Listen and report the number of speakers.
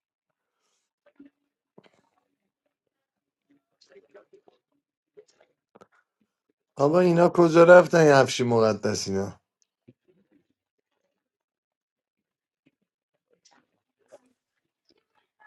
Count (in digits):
1